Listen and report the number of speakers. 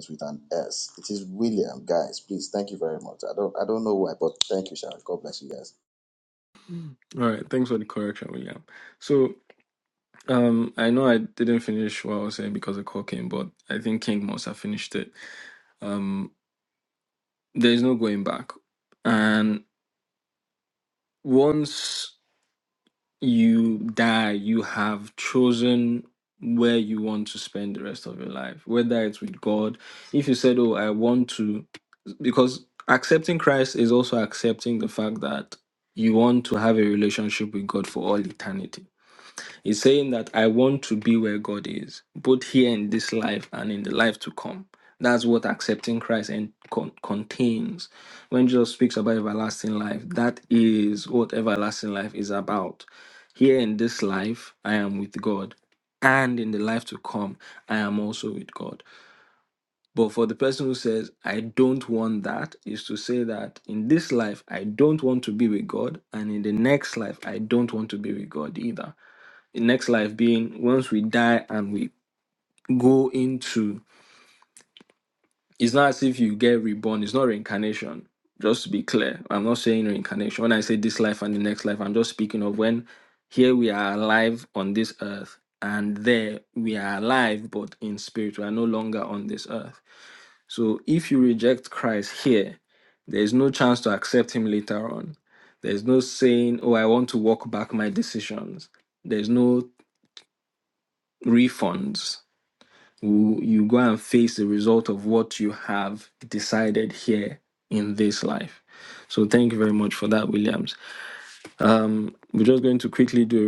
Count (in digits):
2